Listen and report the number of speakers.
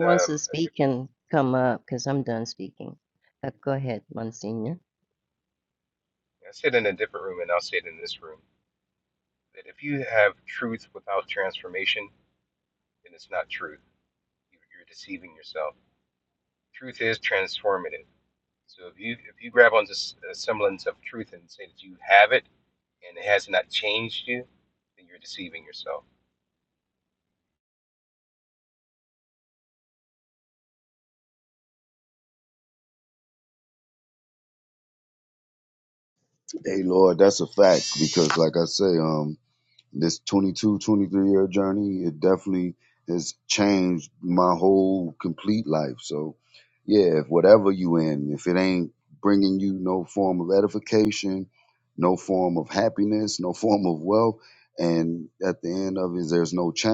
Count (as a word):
three